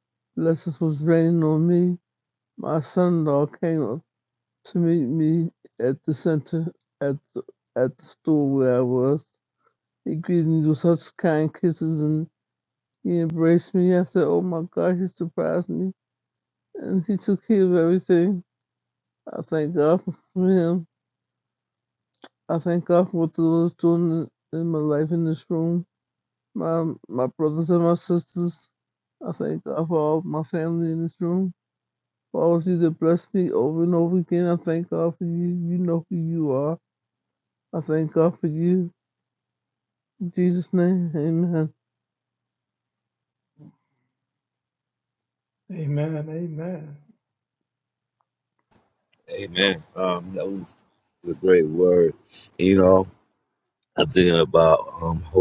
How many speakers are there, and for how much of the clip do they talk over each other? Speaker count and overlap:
3, no overlap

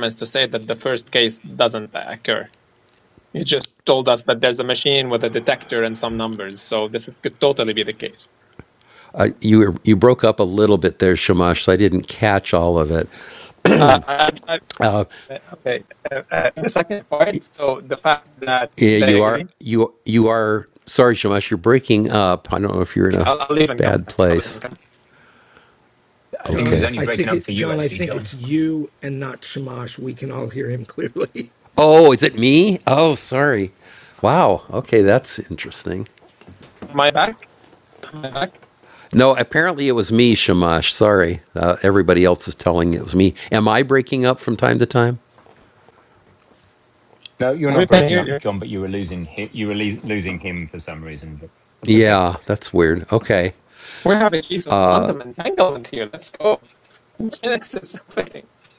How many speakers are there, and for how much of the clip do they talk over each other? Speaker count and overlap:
4, about 8%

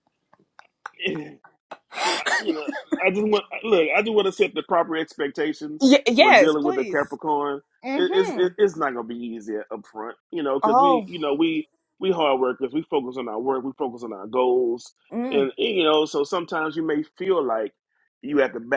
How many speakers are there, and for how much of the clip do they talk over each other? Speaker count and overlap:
2, about 10%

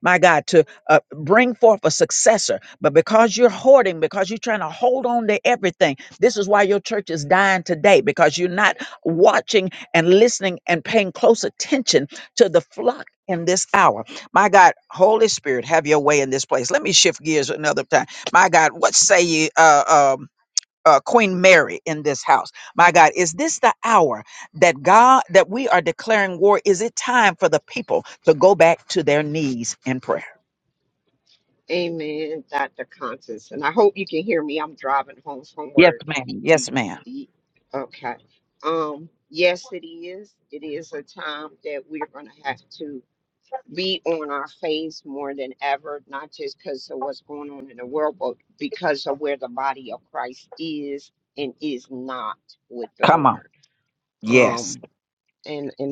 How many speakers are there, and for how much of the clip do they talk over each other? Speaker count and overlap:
2, about 2%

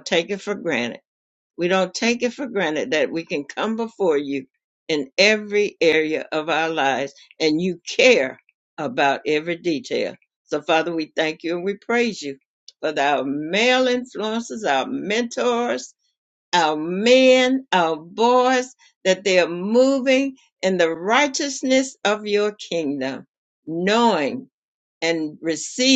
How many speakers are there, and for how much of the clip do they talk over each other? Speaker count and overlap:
1, no overlap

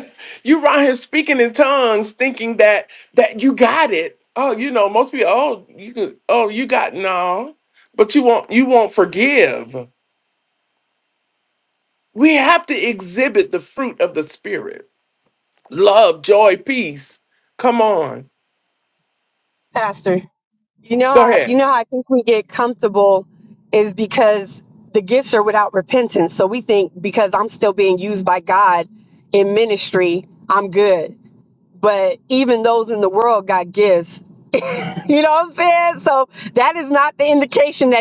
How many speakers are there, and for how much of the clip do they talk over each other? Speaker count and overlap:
2, about 1%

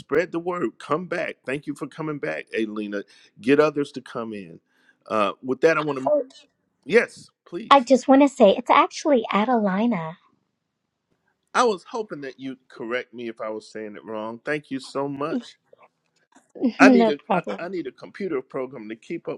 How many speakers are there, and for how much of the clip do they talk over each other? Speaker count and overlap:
2, about 4%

